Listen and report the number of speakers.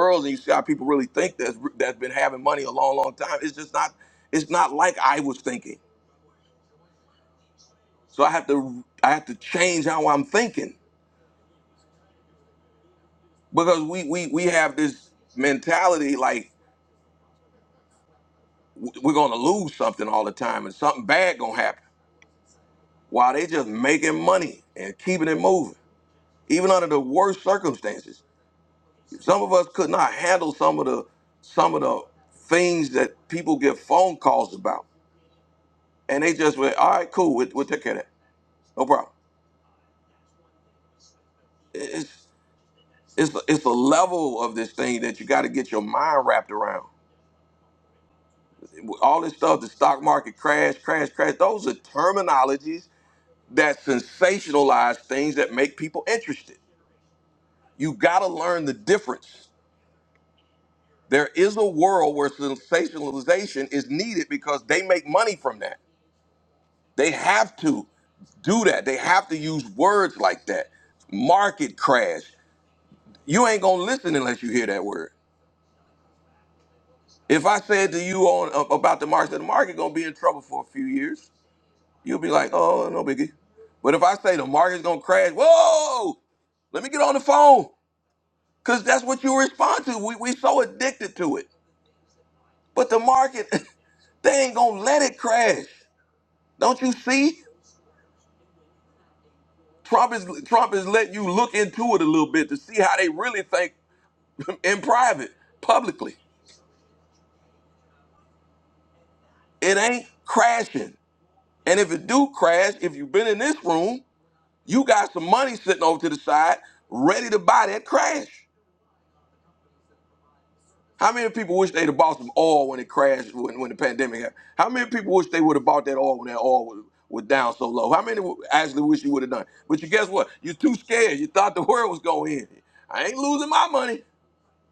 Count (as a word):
one